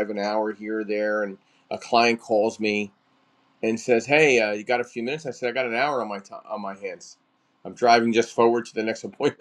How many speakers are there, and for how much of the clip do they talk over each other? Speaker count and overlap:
one, no overlap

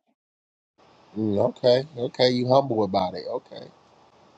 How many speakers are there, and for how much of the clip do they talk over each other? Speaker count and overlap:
one, no overlap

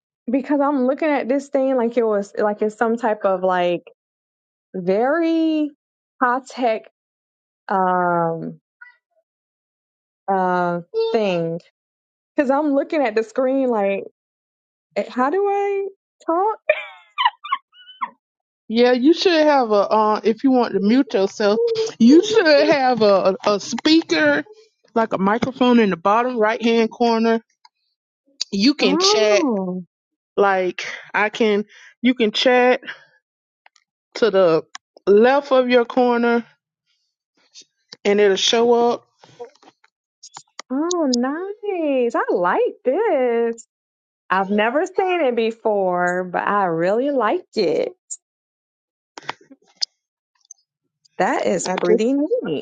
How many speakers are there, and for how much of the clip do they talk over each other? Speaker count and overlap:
two, about 2%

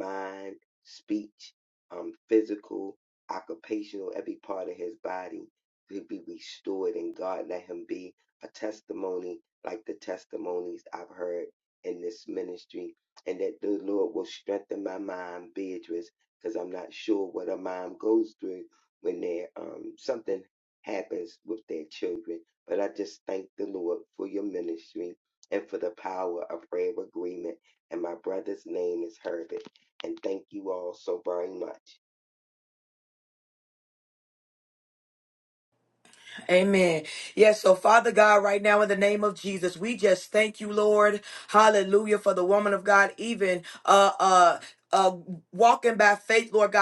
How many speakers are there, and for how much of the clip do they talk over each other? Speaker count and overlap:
two, no overlap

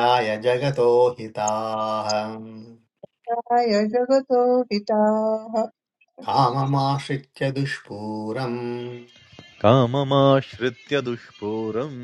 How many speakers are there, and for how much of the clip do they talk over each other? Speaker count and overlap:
three, no overlap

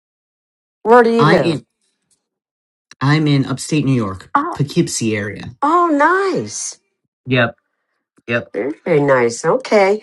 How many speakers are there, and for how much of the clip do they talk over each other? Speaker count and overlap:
two, about 6%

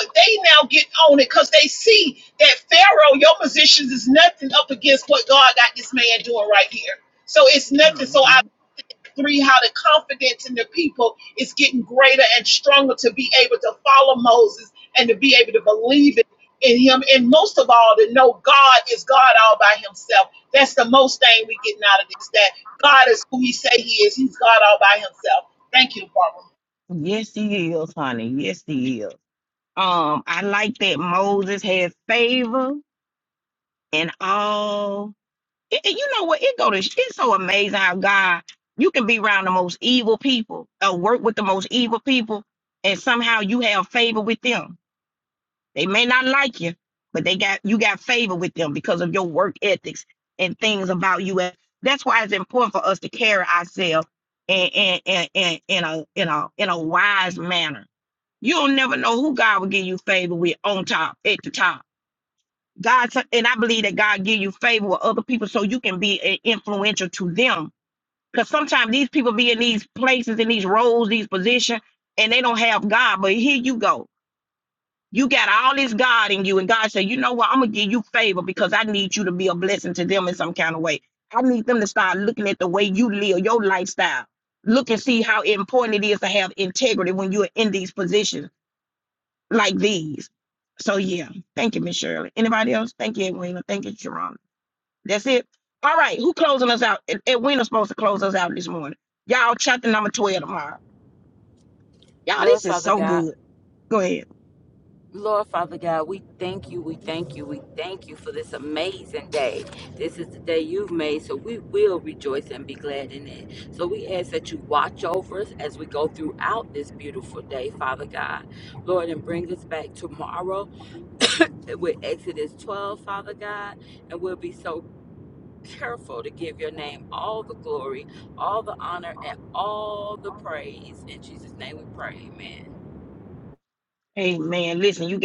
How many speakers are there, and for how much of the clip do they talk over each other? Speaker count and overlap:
three, about 1%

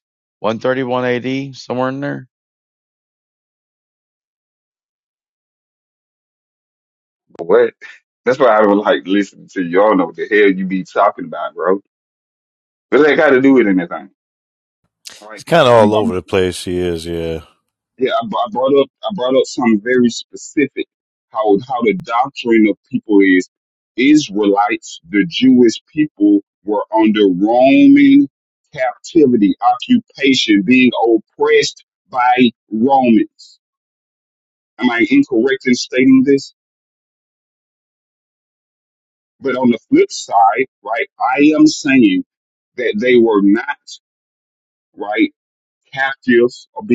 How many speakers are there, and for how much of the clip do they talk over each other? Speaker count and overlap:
three, no overlap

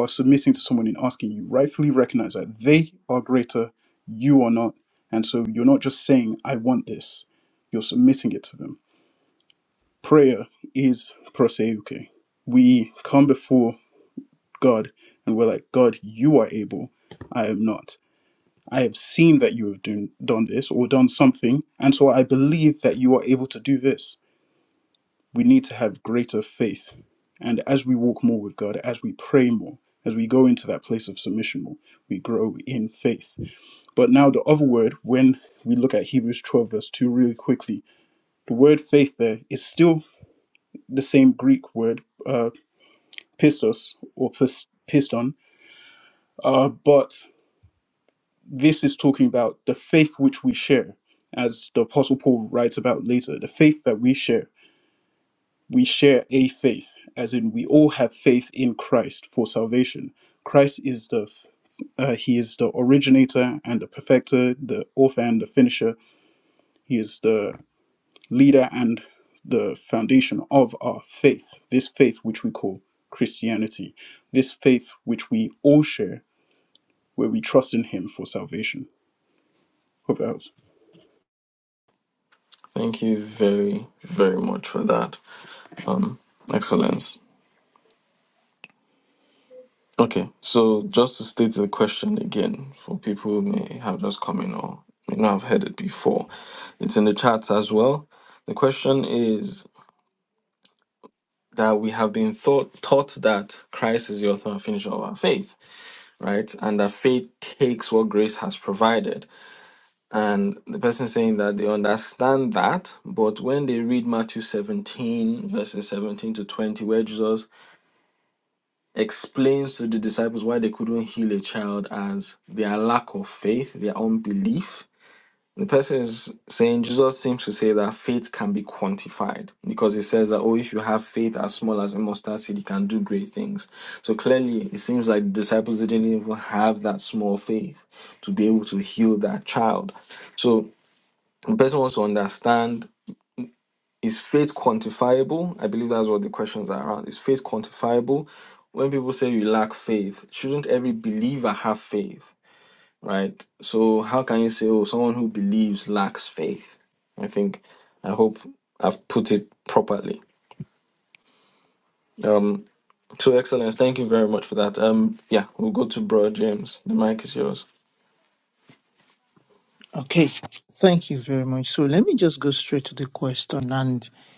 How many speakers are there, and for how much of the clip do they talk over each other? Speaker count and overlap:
three, no overlap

